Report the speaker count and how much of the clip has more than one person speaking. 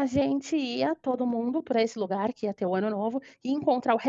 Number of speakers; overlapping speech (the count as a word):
one, no overlap